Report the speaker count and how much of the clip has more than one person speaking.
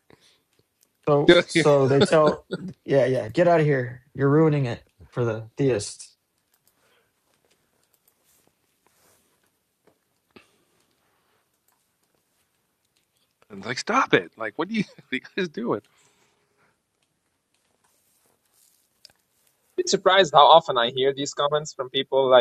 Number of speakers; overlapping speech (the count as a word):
three, no overlap